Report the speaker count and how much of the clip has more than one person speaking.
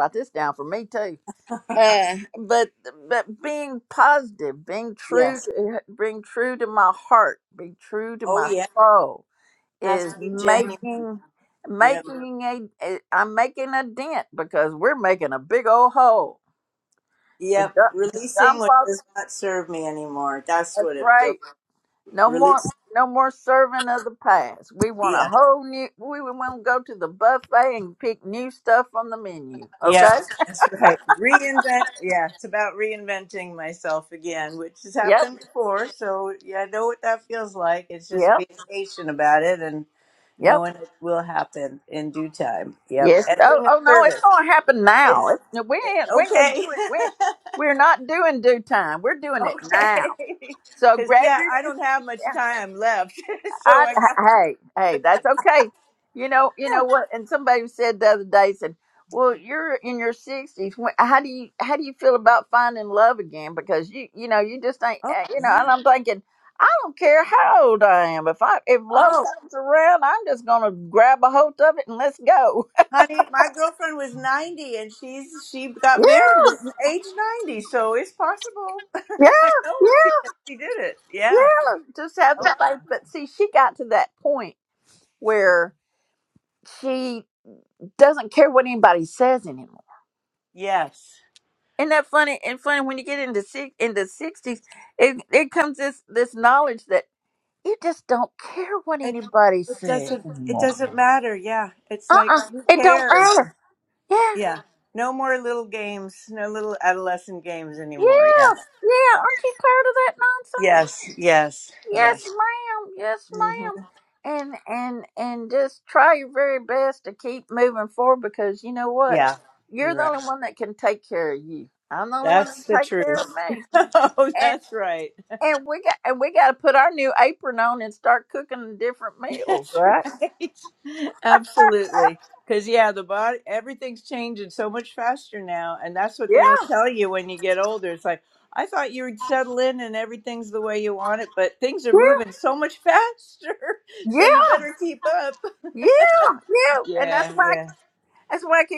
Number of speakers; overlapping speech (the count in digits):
2, about 13%